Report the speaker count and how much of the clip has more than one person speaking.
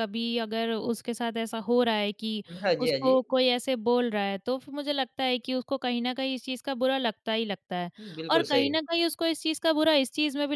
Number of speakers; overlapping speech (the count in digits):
2, about 9%